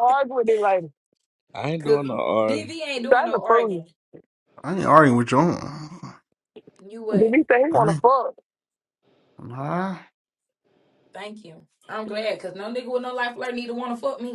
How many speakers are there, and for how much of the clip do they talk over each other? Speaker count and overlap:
4, about 12%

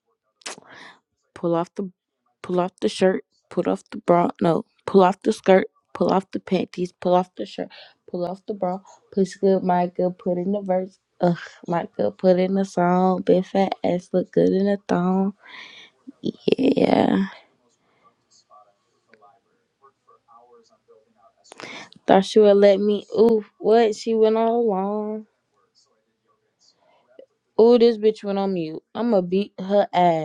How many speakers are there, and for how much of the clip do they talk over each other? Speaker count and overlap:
1, no overlap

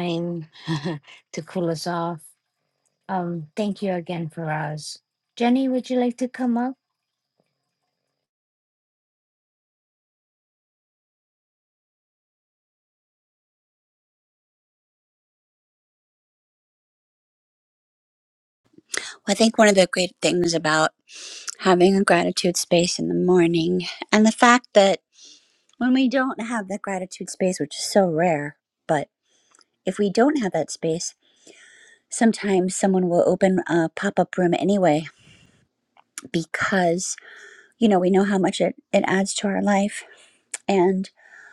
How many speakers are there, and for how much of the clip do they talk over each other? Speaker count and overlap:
2, no overlap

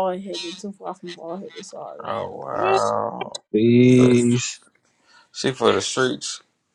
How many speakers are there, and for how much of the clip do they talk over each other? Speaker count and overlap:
3, about 1%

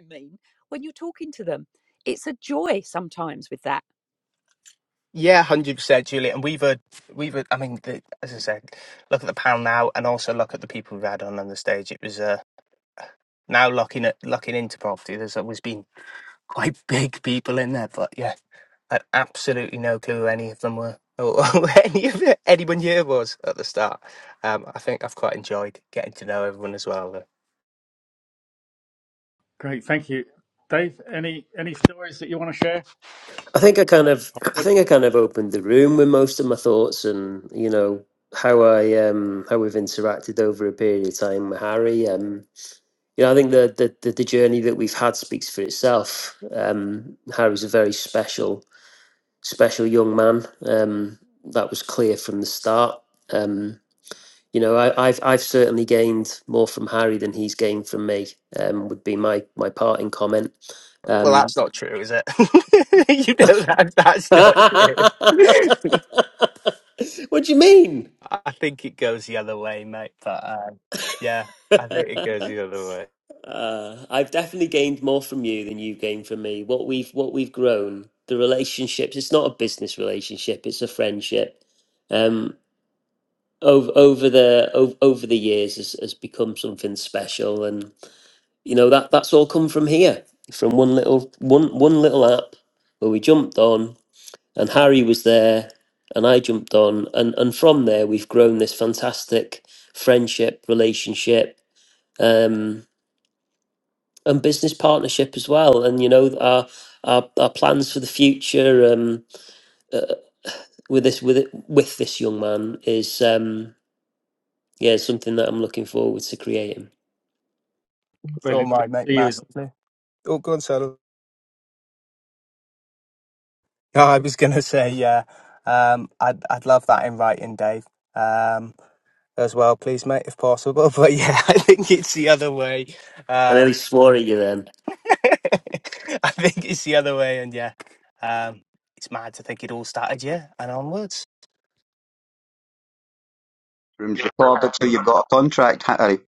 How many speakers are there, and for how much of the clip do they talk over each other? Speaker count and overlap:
5, about 2%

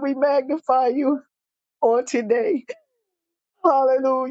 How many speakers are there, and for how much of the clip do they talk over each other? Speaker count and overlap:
1, no overlap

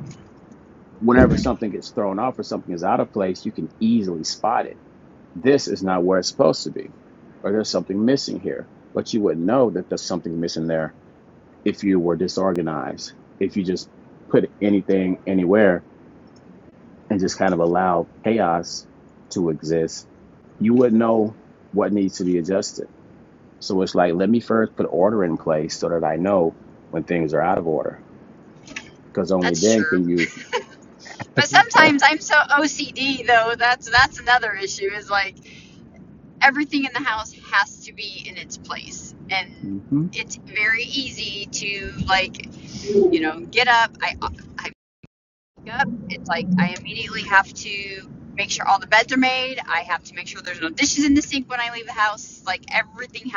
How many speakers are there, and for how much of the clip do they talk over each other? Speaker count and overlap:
2, about 1%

